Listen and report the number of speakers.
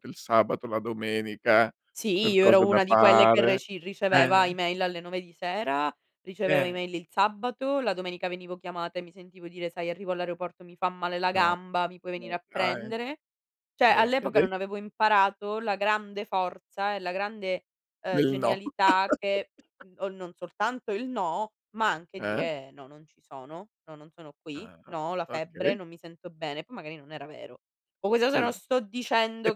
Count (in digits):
2